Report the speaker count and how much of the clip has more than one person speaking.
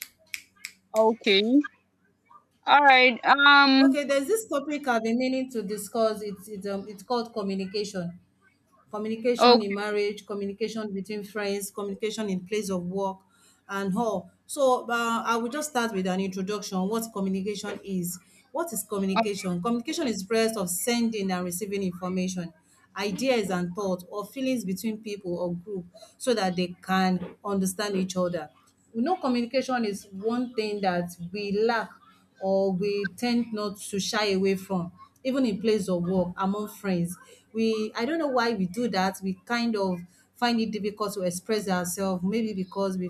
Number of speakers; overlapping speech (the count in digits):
2, about 2%